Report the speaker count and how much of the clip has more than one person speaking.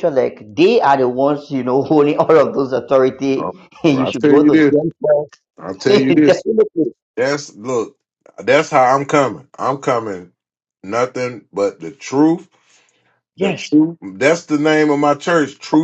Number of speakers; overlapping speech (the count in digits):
2, about 11%